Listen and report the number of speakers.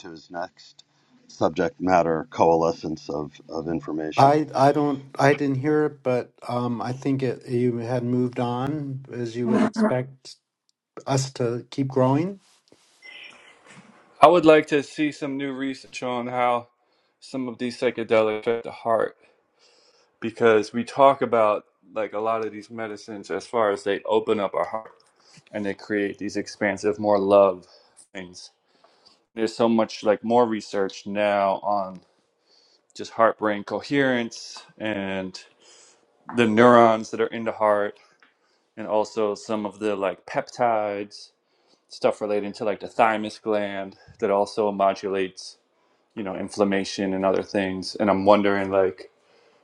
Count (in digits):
3